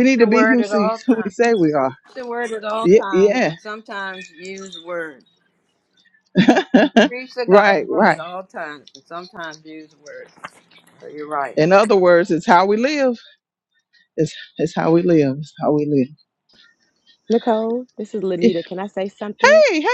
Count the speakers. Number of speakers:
3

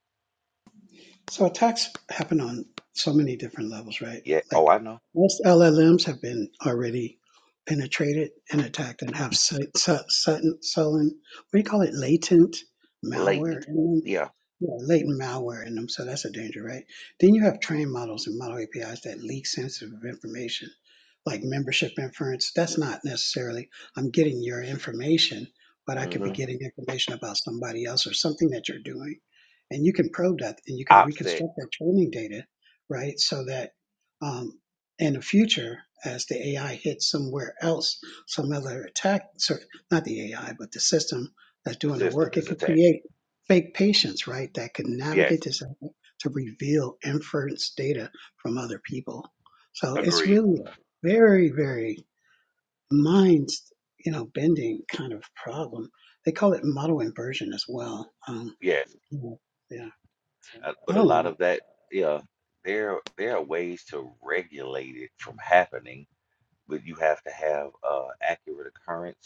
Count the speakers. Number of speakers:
2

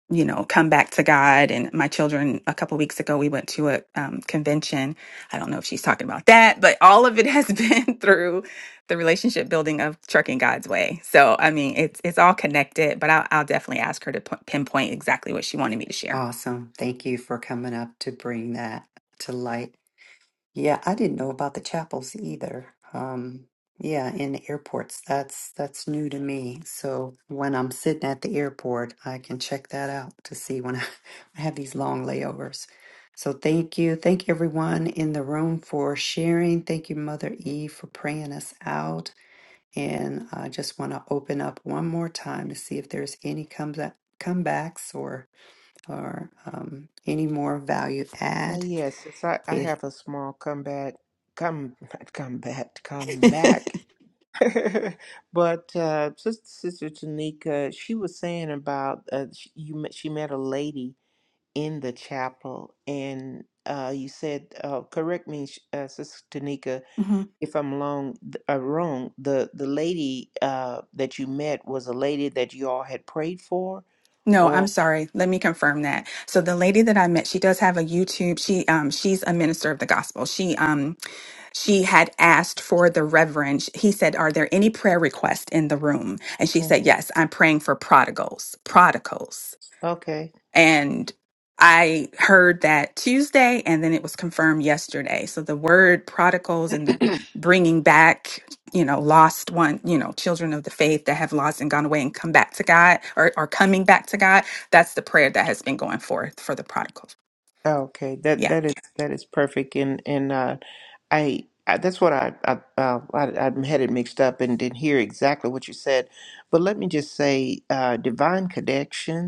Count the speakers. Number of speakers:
3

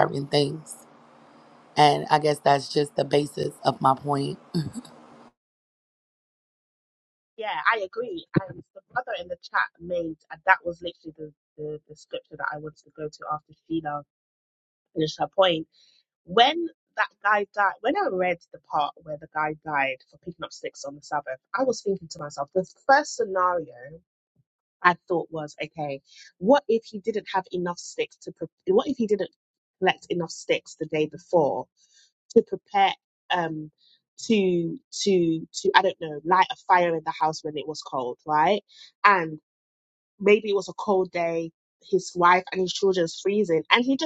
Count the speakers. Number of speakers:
2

